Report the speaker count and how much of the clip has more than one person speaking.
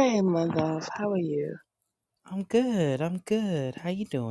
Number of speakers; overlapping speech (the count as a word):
two, no overlap